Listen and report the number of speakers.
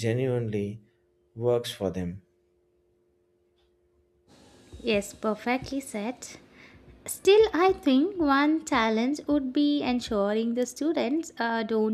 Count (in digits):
2